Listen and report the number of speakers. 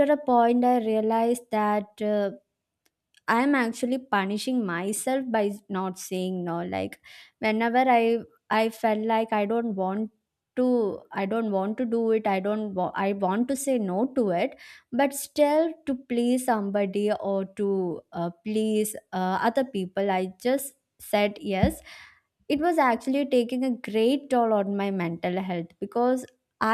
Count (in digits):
1